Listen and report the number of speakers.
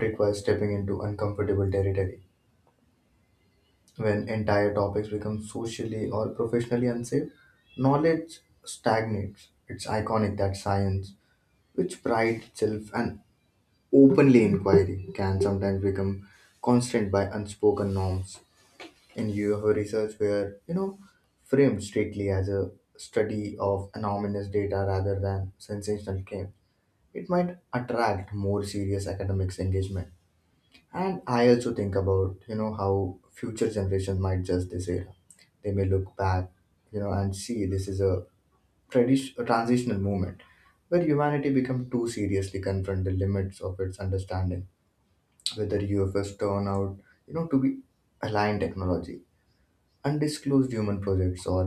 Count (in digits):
1